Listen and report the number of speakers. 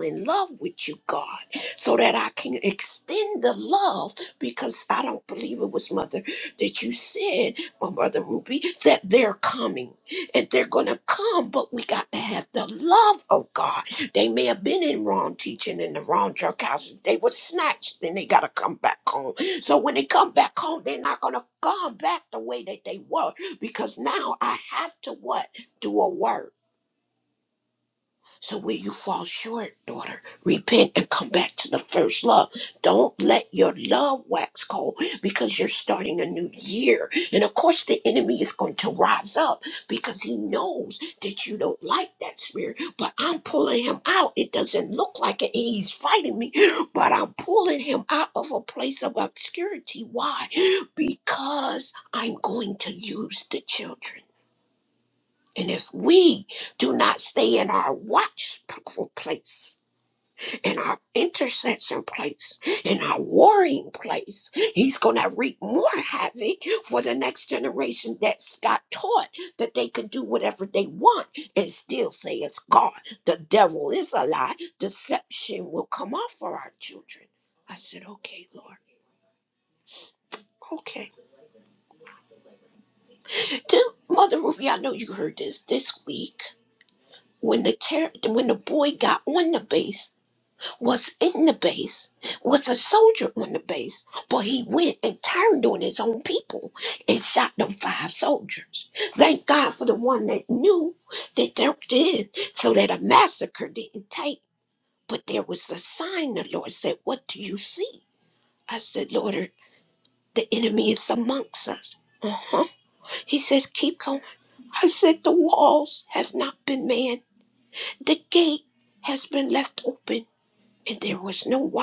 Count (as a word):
one